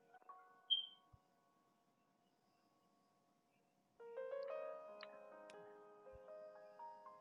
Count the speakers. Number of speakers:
zero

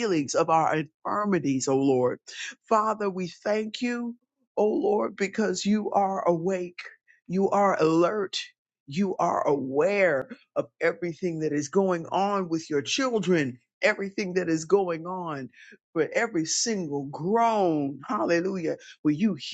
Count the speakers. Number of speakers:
one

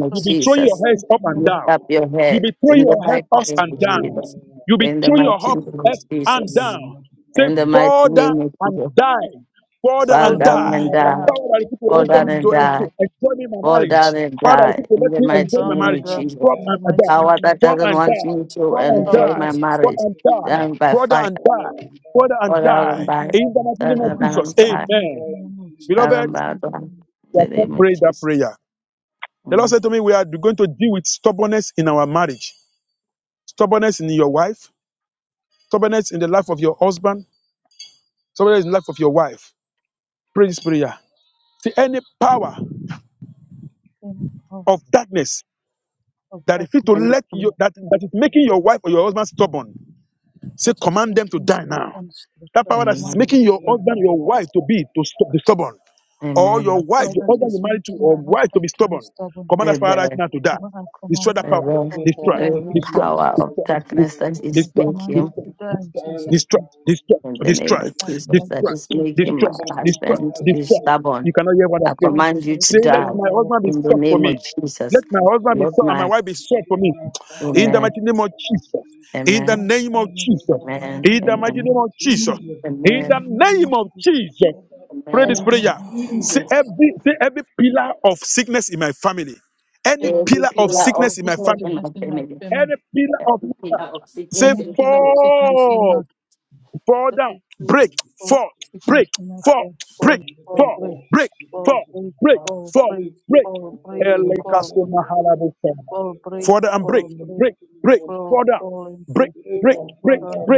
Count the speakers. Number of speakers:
four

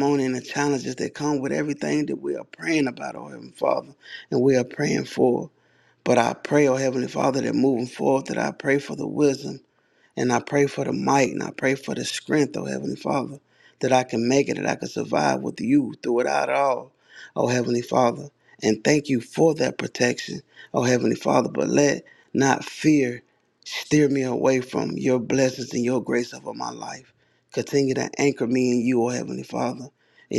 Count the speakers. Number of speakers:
one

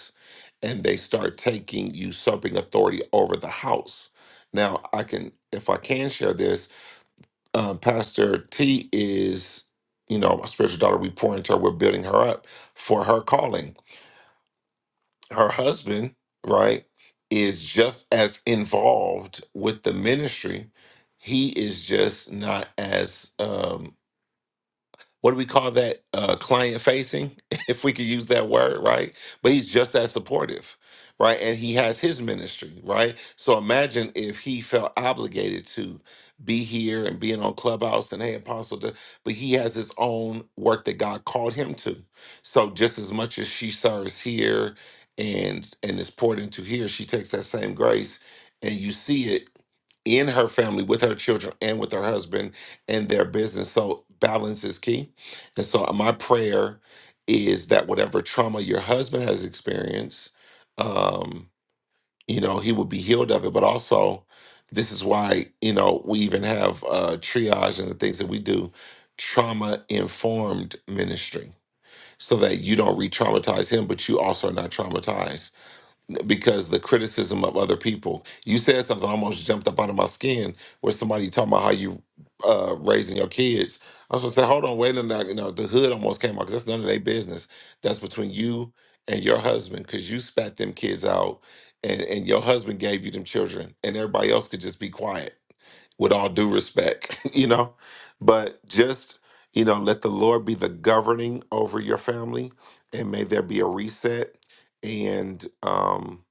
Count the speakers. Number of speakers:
one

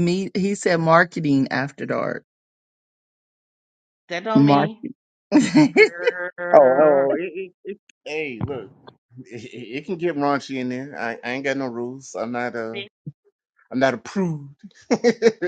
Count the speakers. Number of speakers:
three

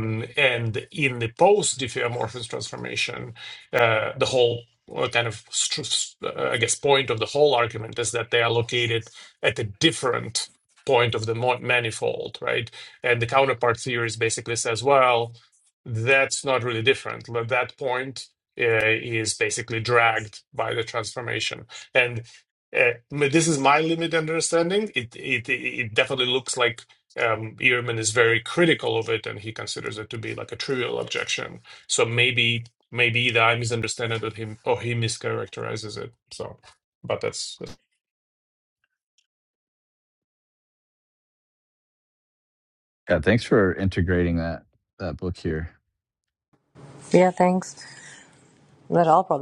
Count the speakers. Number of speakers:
three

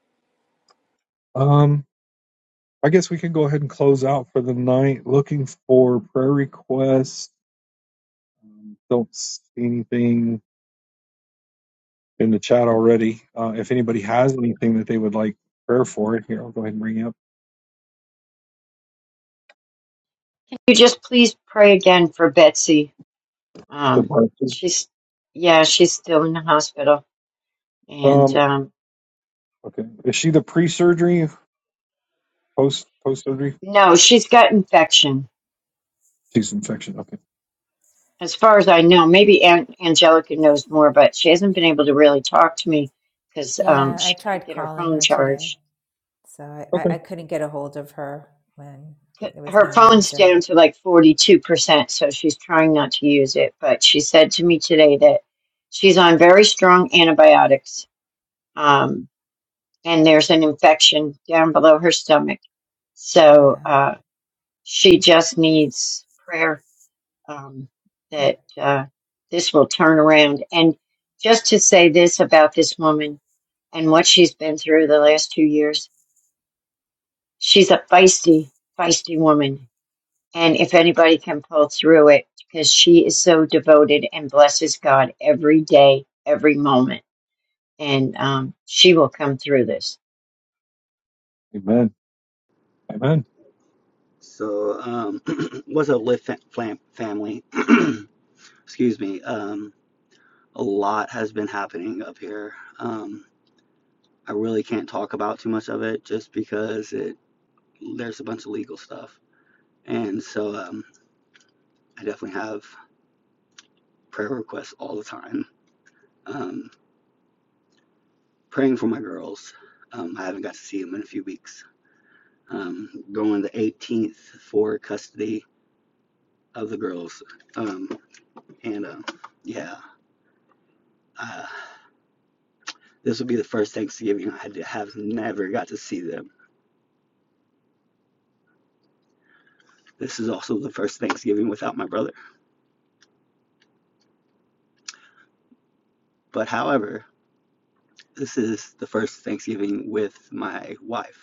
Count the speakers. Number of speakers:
four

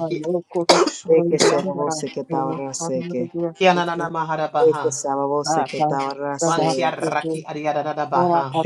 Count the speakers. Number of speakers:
three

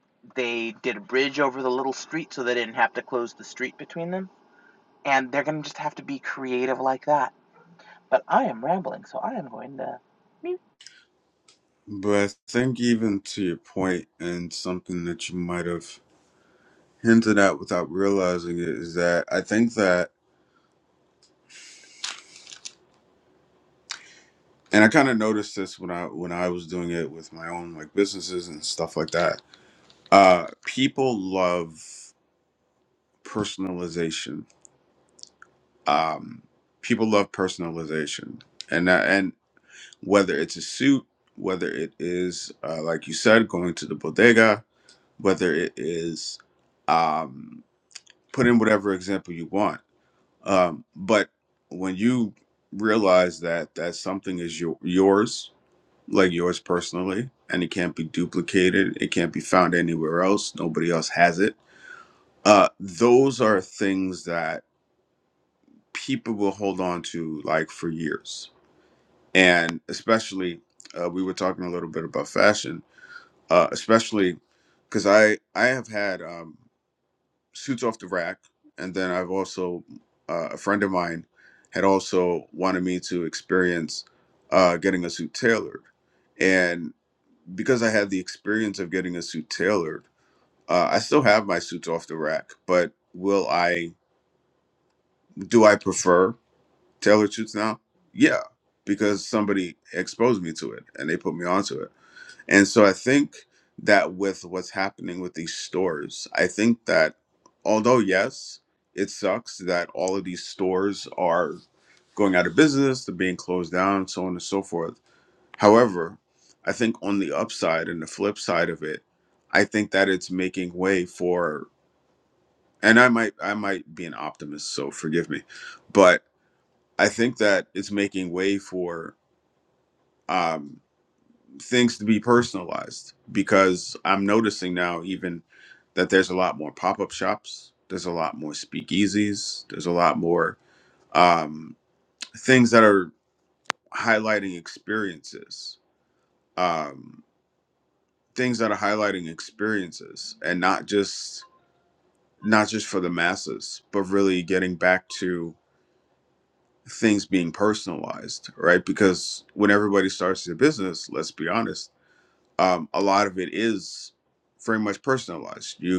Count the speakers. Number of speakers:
two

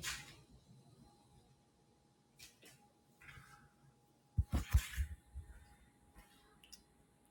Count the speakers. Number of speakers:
zero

